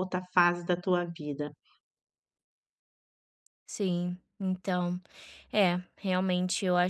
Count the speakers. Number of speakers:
two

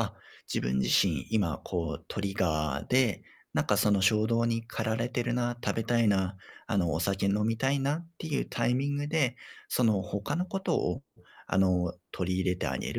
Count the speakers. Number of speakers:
one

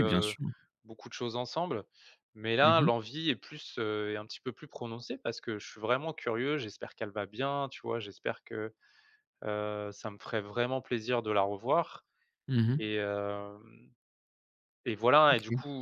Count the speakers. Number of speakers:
two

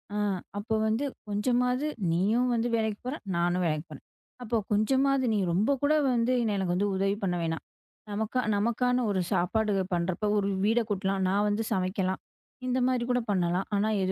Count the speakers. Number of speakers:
one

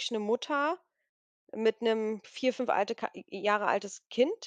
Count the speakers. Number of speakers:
one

